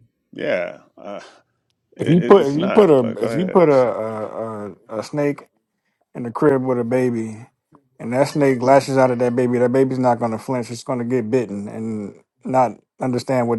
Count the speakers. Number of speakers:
2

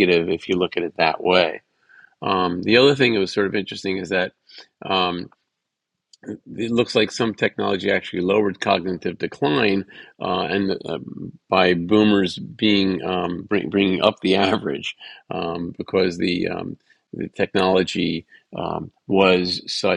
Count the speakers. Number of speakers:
1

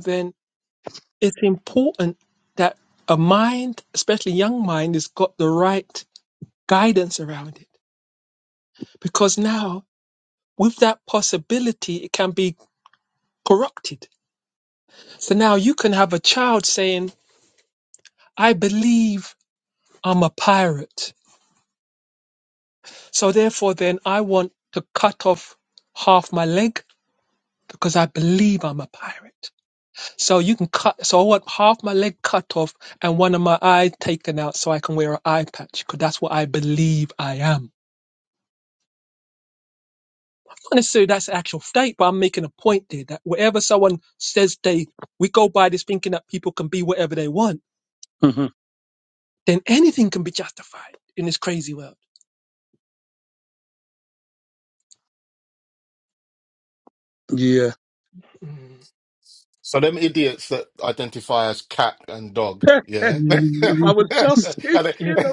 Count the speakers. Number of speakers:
3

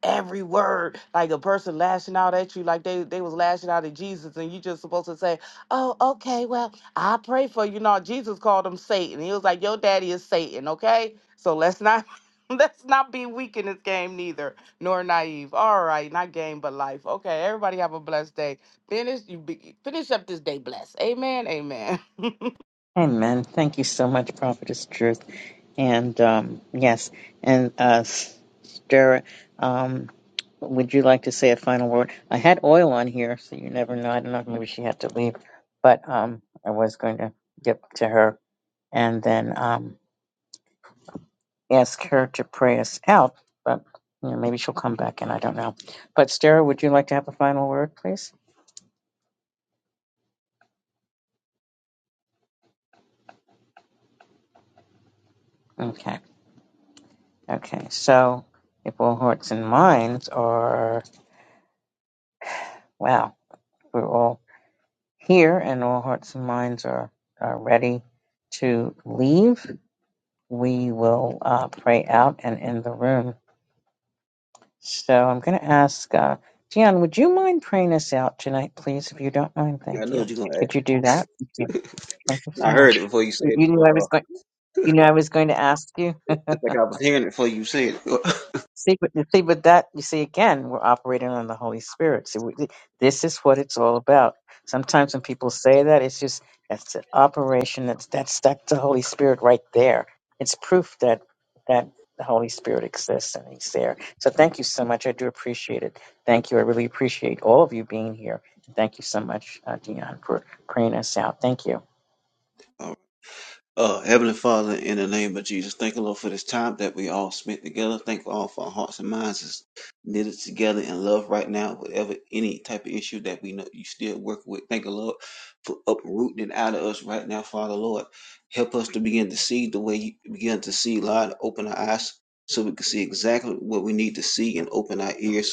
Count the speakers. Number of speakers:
3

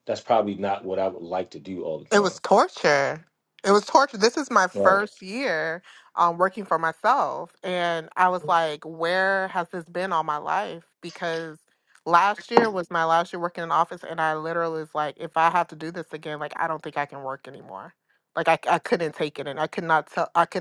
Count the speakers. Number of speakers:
2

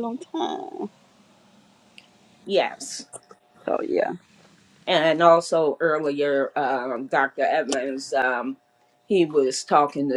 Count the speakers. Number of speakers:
2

